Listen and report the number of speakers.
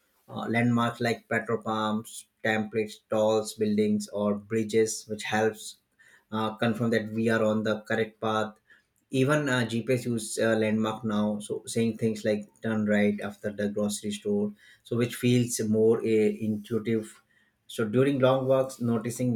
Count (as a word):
one